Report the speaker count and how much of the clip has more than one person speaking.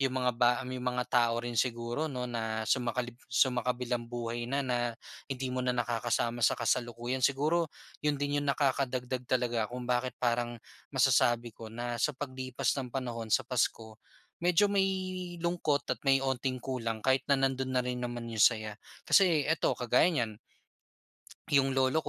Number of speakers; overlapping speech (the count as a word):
one, no overlap